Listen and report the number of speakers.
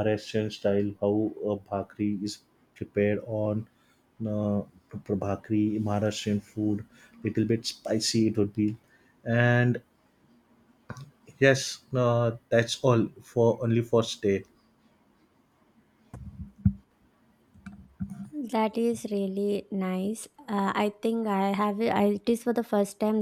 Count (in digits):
2